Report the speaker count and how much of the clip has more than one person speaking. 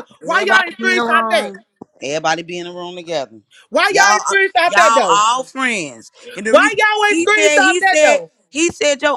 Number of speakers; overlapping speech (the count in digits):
2, about 38%